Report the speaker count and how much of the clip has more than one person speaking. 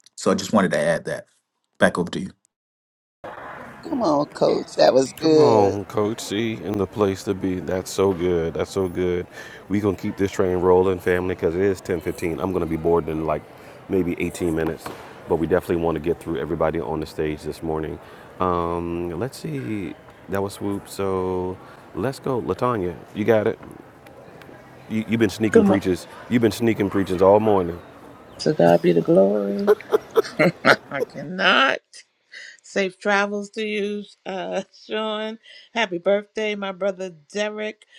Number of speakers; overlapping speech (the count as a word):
four, about 2%